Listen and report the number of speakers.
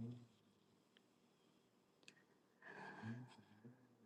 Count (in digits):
0